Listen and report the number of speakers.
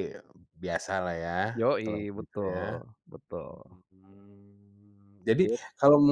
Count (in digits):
2